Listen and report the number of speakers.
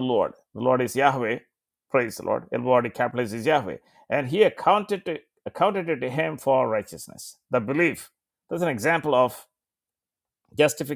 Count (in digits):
1